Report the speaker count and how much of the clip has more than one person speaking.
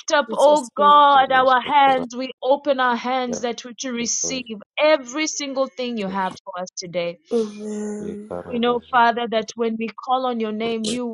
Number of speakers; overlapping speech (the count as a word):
two, about 7%